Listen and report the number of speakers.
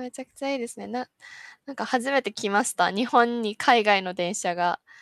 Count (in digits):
1